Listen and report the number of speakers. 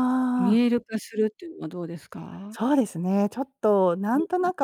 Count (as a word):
two